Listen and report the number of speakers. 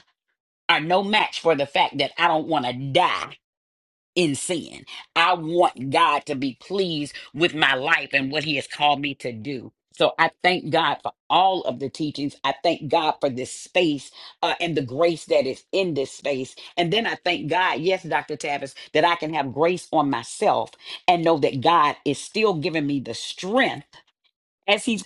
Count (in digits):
1